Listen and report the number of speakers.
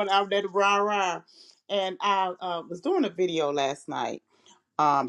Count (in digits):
1